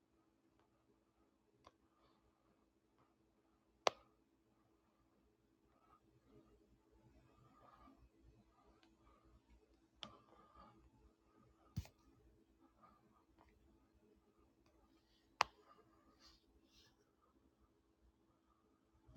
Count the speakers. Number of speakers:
zero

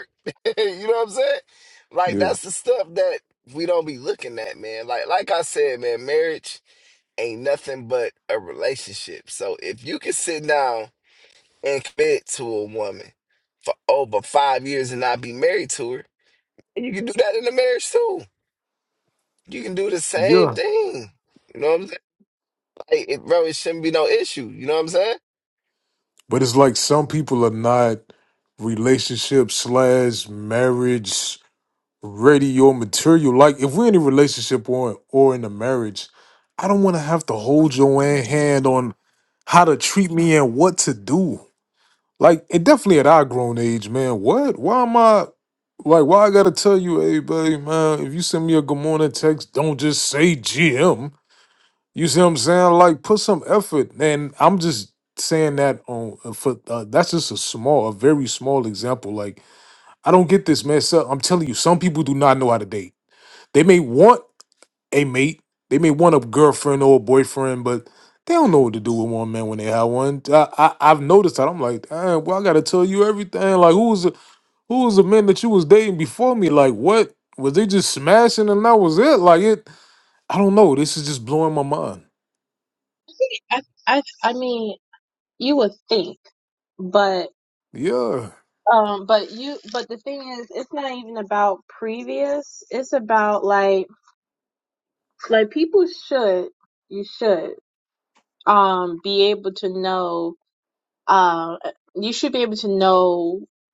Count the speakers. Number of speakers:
three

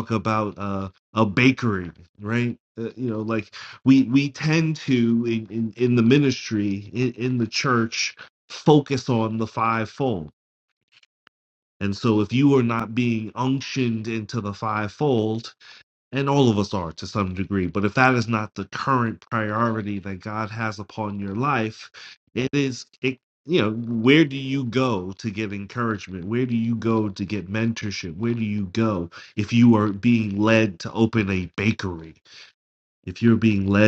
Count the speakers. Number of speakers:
one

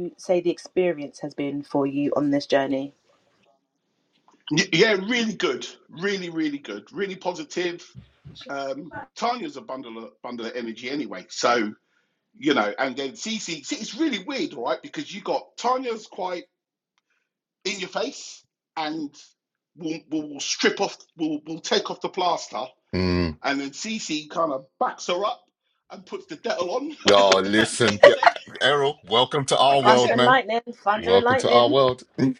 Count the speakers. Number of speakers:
three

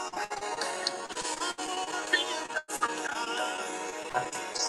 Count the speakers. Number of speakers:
zero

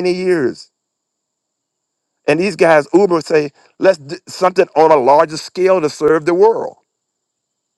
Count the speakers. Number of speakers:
one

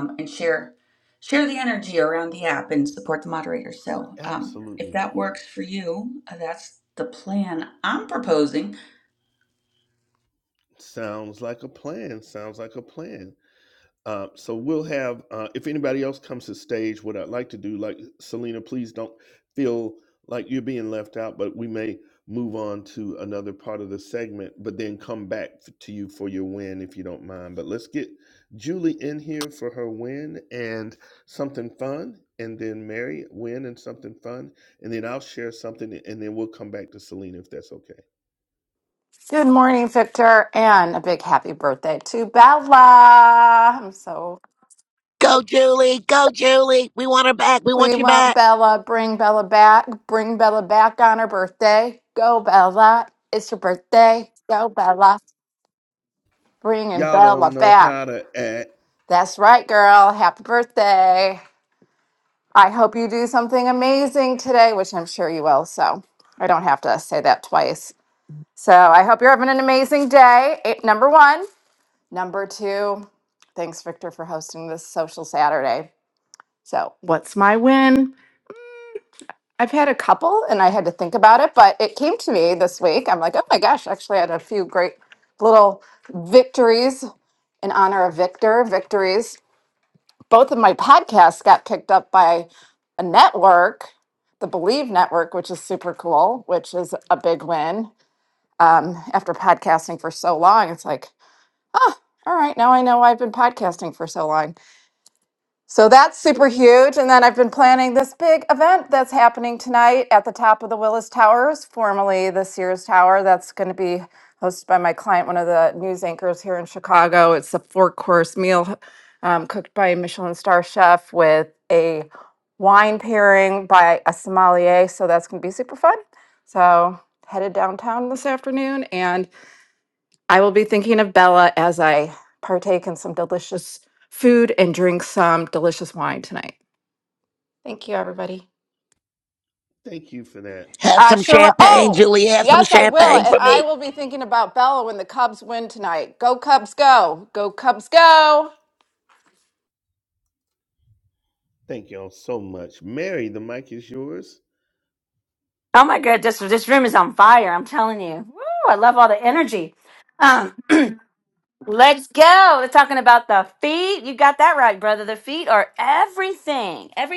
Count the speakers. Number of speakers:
five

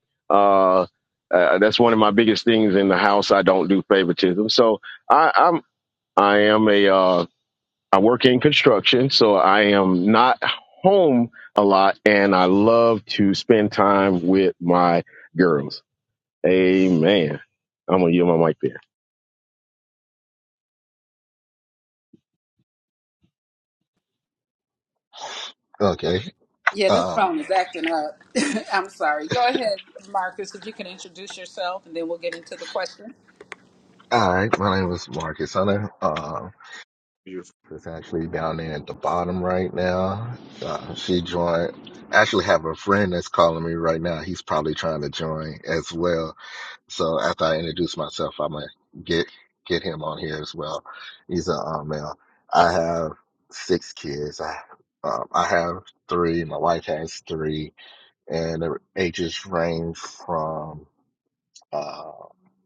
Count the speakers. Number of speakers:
three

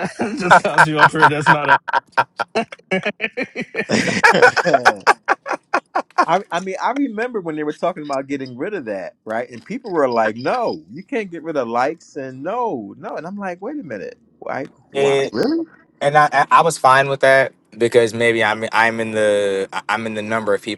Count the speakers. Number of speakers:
three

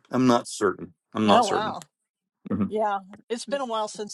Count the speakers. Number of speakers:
two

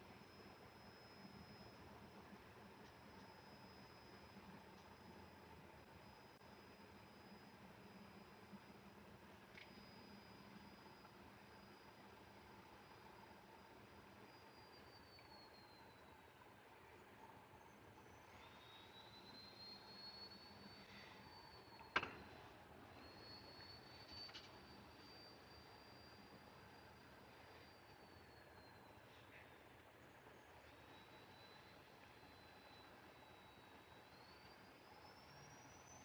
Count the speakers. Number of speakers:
zero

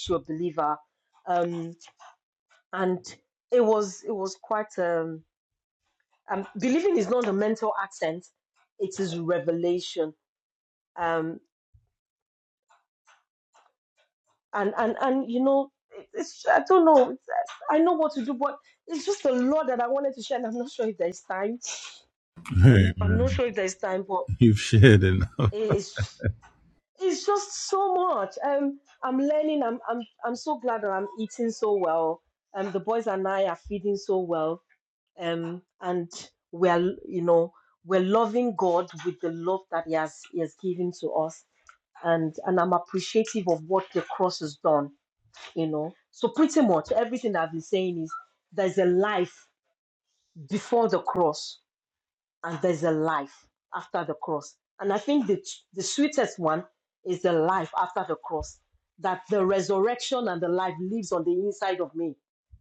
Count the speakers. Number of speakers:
two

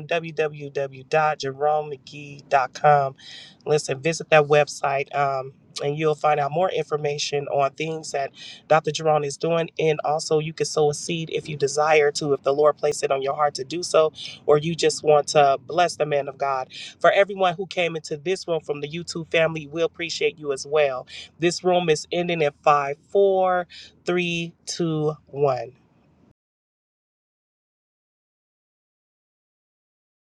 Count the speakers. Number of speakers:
one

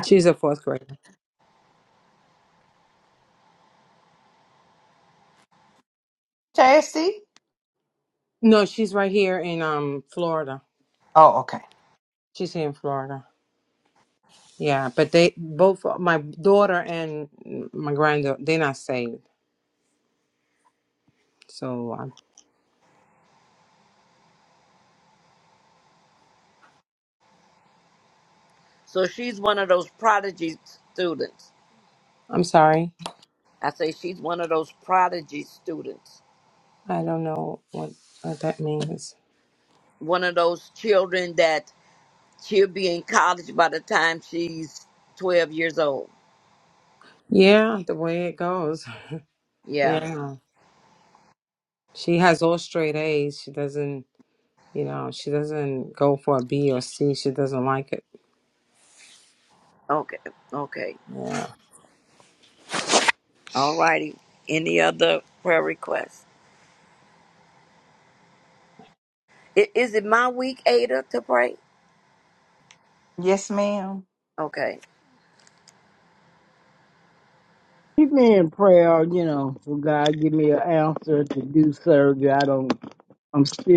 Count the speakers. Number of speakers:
four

